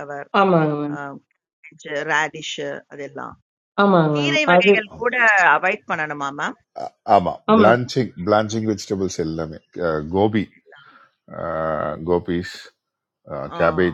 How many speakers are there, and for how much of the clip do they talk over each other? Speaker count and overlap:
three, about 6%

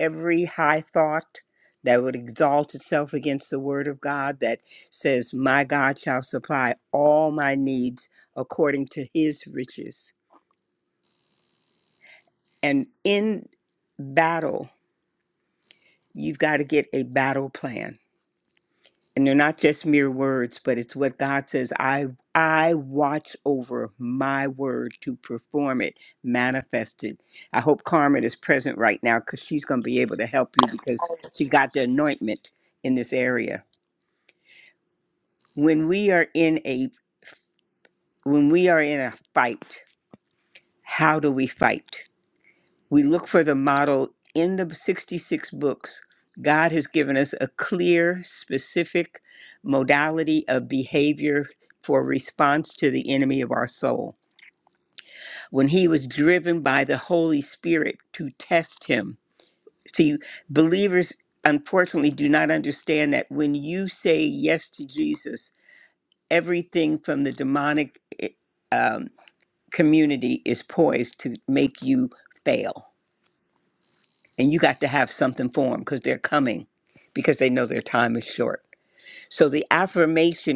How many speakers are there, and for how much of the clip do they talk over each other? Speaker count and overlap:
one, no overlap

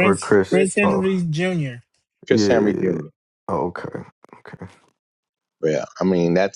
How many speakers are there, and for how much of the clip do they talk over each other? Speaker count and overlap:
three, about 29%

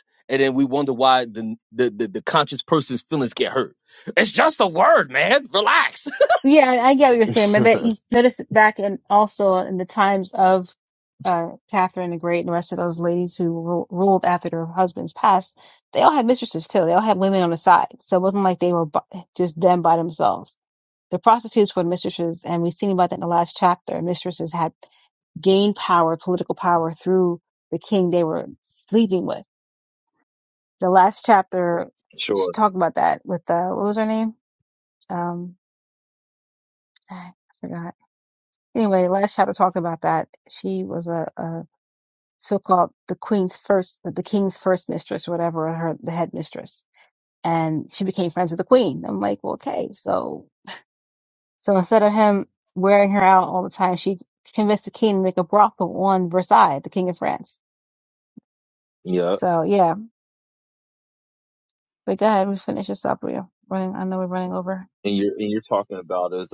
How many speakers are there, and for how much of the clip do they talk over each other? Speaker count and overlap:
three, under 1%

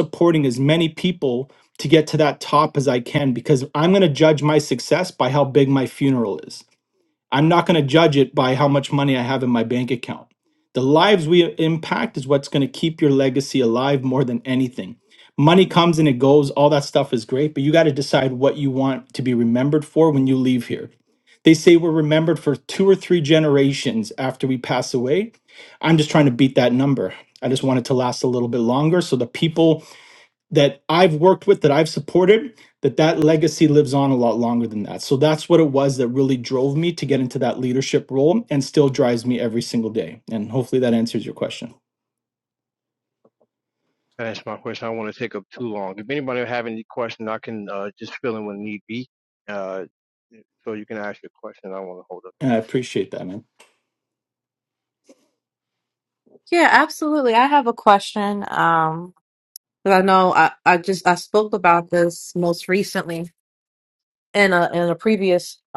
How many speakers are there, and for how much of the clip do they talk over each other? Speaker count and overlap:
three, under 1%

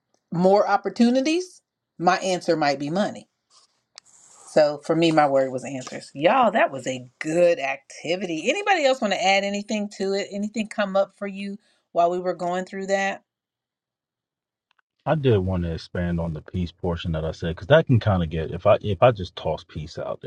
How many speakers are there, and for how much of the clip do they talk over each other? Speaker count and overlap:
two, no overlap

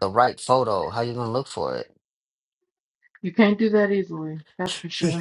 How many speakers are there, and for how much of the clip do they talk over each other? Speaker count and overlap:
two, about 5%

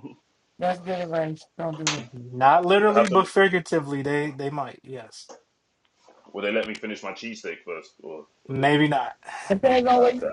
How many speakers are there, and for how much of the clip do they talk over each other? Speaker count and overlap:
three, about 10%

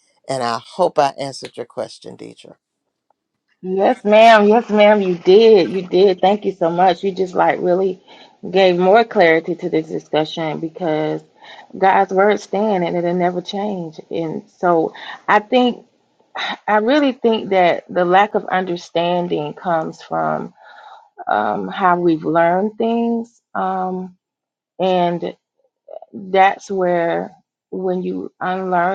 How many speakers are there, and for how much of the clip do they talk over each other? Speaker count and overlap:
two, no overlap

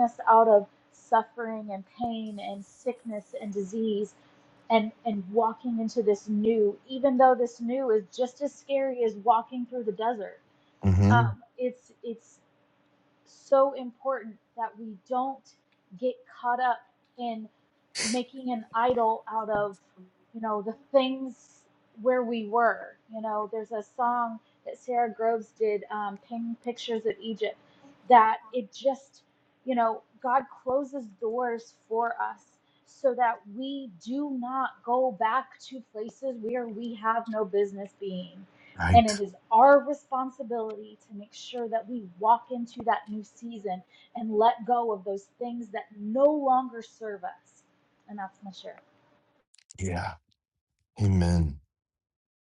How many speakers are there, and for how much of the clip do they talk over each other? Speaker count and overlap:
two, about 1%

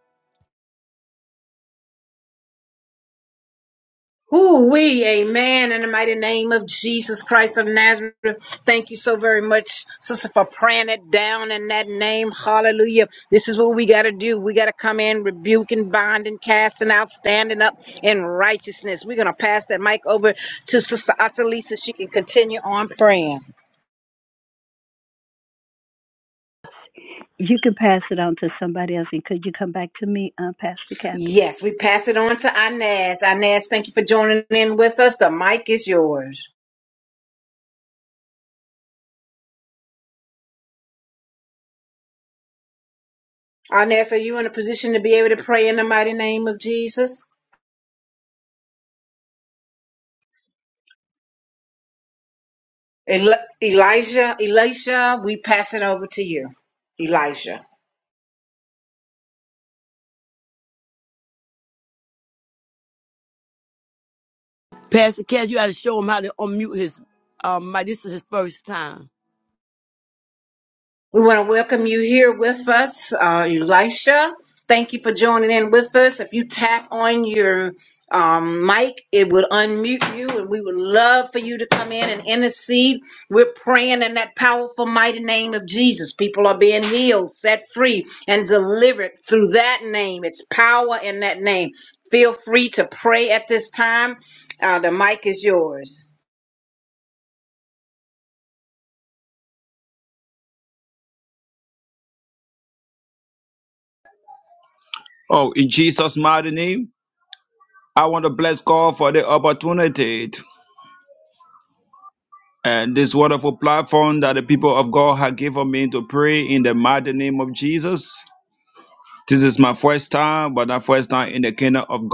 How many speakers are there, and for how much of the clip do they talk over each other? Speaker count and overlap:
four, under 1%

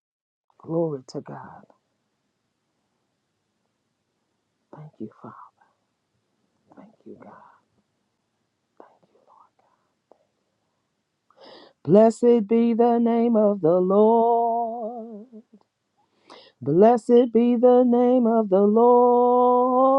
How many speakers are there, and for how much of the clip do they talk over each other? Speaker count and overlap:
one, no overlap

